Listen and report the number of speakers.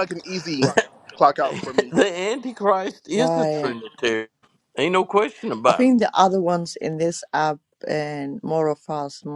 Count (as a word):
three